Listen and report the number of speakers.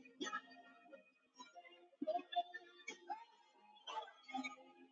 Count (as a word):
zero